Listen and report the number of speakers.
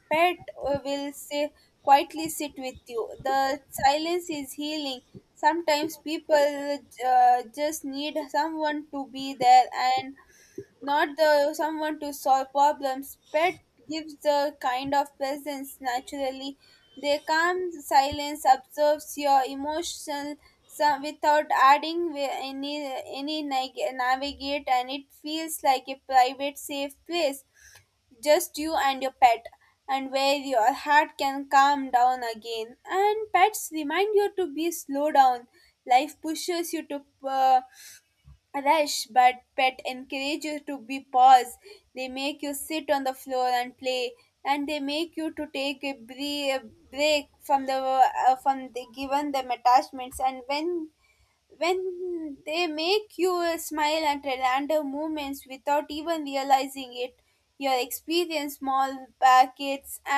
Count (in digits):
1